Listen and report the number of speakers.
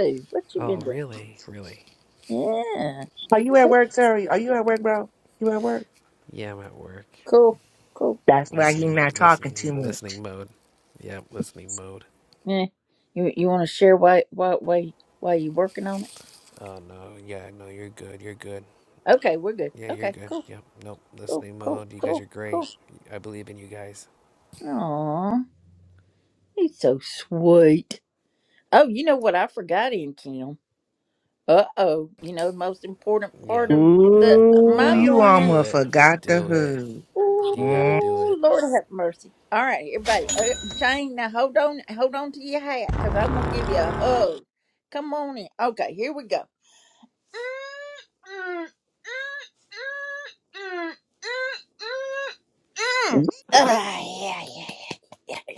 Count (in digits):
3